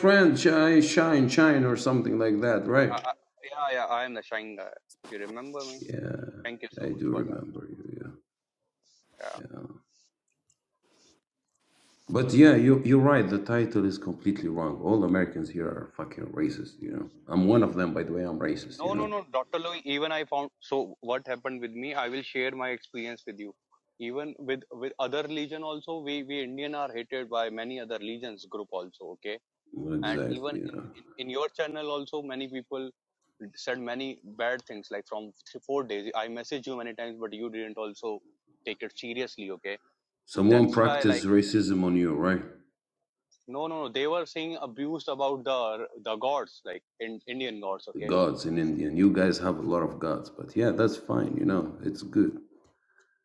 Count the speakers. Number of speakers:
2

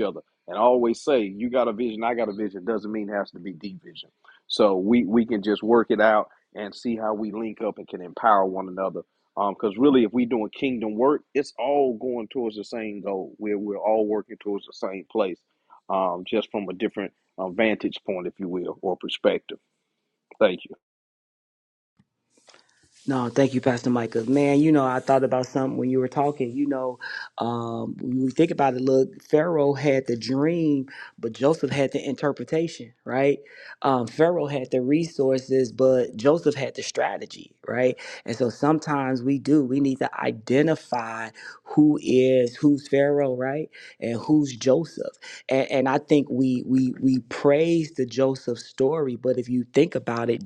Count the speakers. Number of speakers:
2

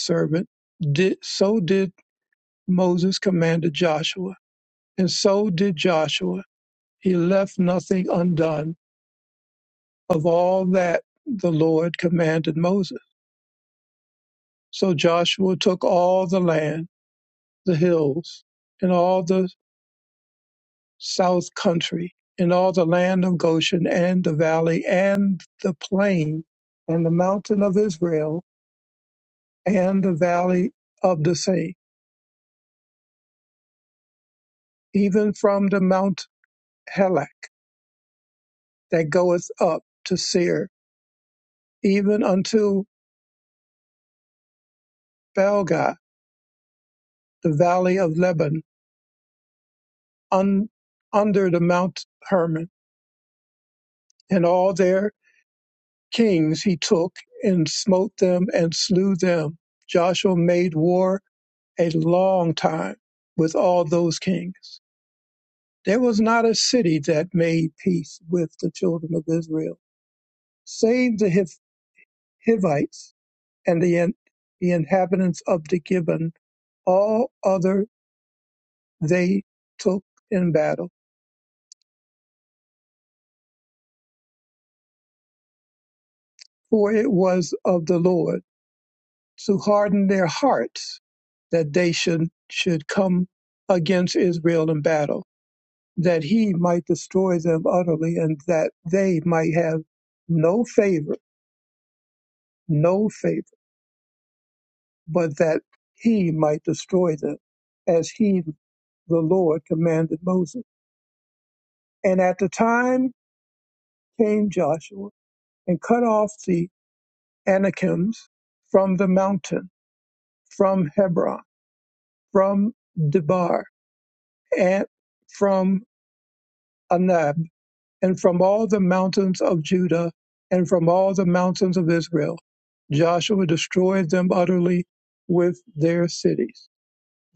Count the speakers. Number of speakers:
1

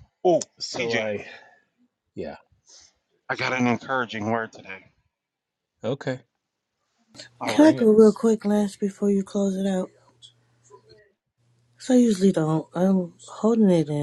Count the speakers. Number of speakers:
3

